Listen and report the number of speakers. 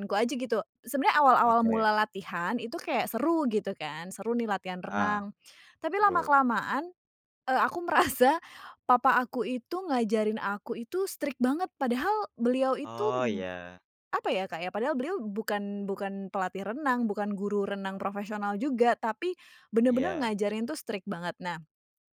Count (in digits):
2